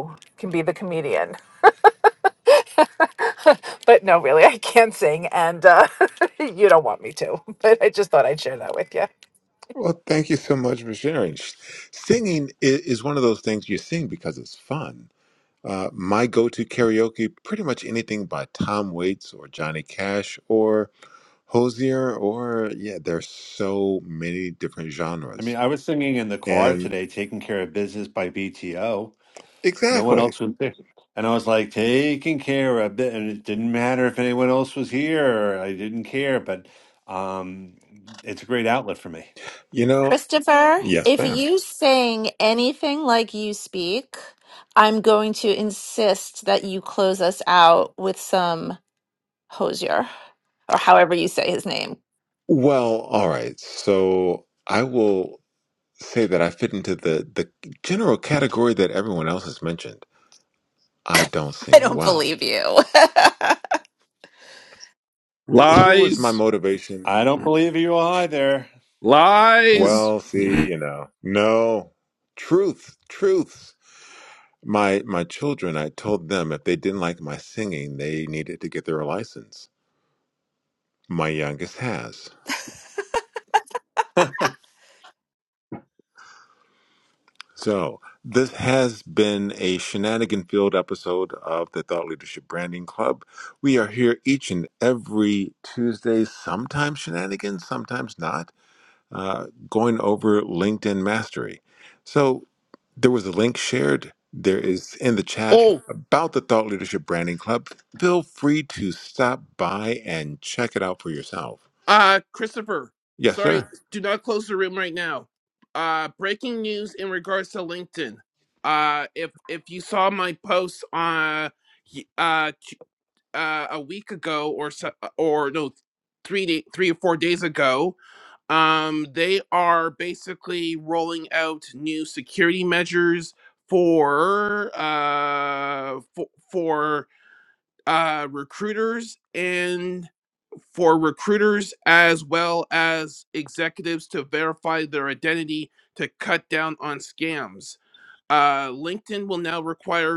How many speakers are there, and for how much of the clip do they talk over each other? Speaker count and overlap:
5, about 3%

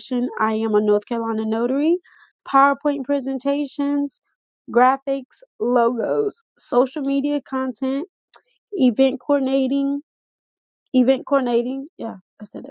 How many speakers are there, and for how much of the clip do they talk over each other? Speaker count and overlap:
1, no overlap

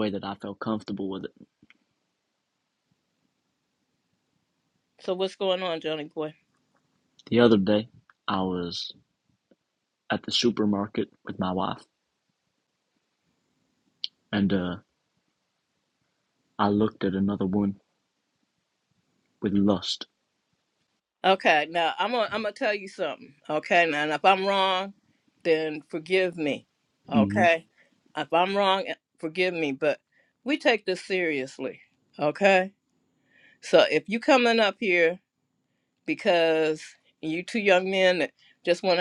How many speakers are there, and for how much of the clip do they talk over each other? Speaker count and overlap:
2, about 1%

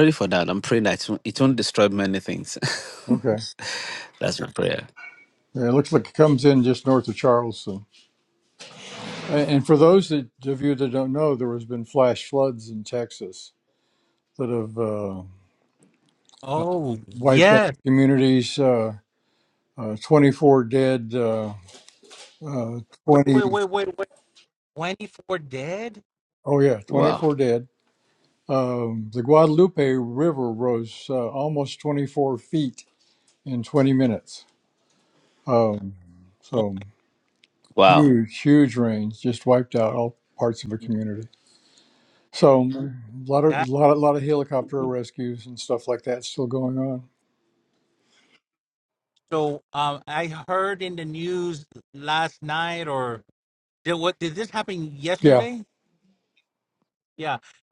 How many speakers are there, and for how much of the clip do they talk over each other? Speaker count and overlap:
3, about 4%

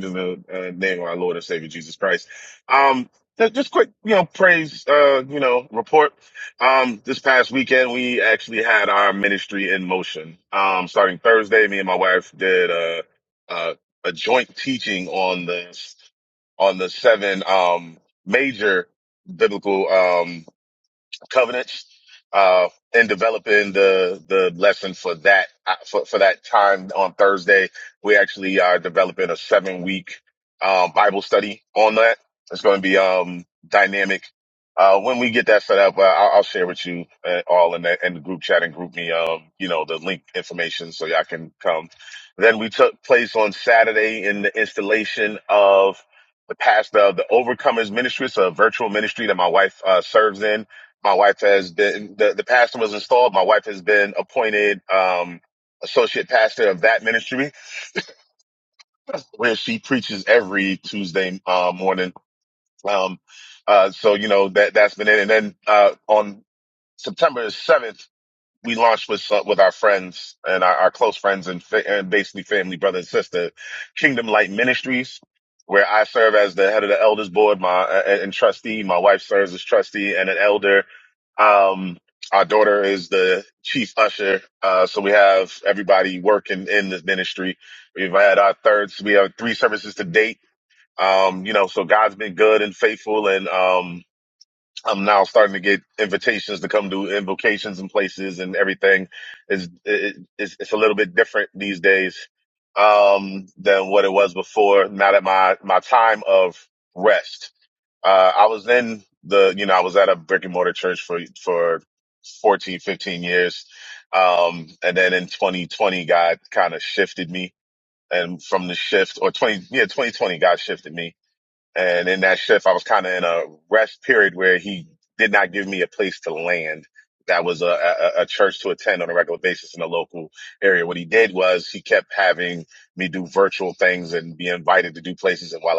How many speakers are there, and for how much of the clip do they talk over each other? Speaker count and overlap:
1, no overlap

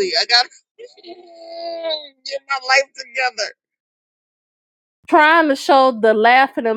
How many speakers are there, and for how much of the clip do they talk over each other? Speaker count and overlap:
2, no overlap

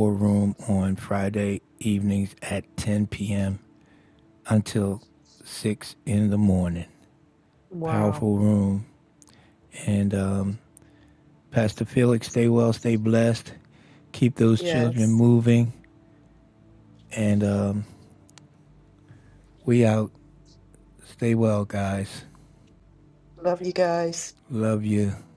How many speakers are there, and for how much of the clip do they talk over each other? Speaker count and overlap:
2, about 4%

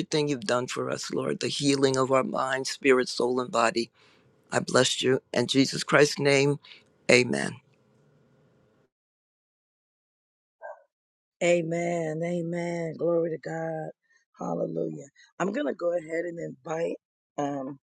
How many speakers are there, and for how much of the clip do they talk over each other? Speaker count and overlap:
2, no overlap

